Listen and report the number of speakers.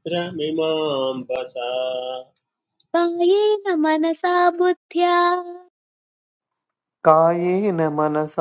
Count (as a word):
three